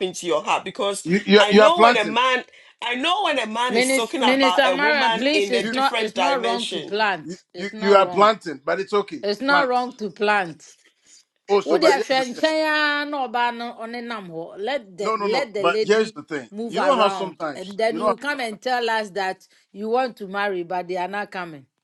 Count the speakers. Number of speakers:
three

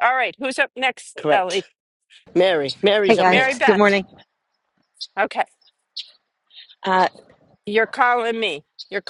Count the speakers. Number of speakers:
three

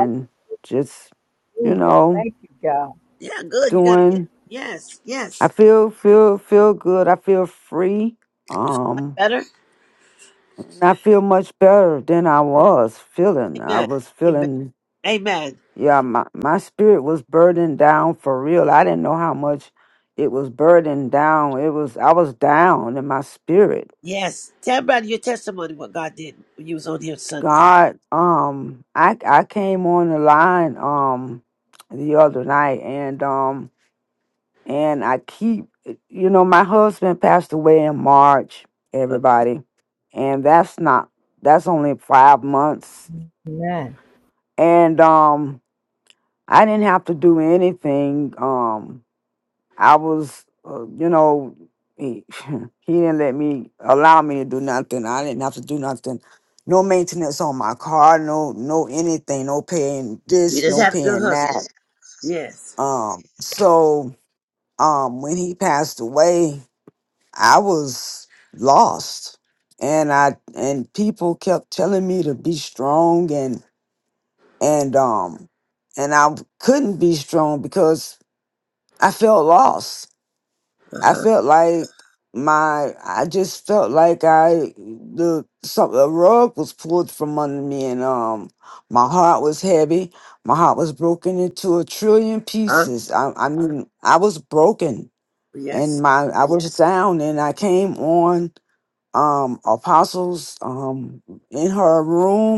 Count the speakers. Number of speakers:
three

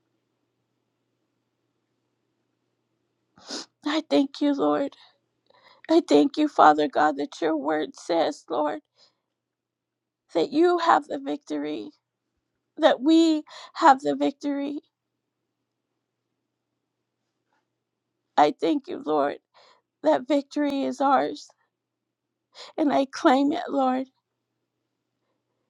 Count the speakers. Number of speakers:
one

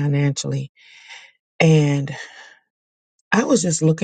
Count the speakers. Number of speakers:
one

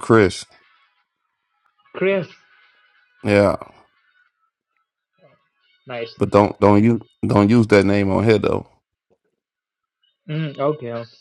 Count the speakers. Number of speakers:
two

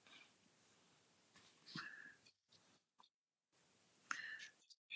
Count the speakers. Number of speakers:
zero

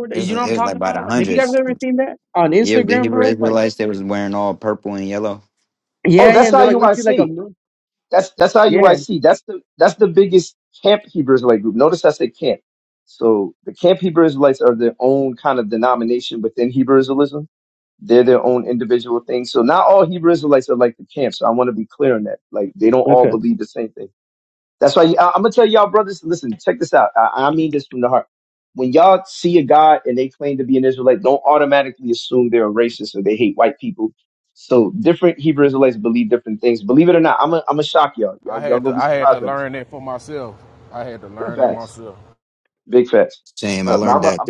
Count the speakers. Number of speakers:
four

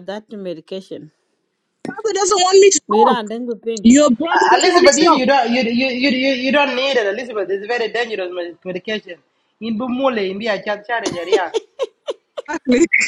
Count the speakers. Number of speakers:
three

